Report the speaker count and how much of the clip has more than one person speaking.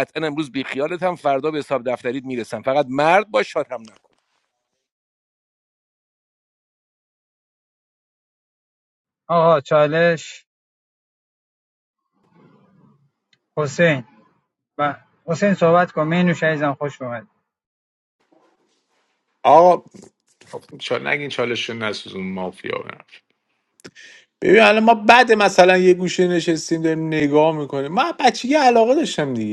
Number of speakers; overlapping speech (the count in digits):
3, no overlap